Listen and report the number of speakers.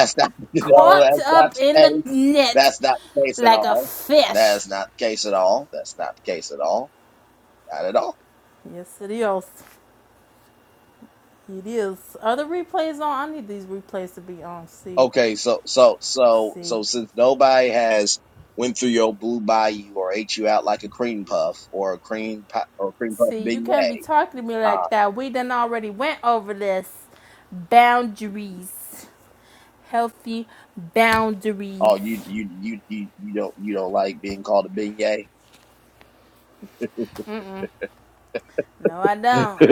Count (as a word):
two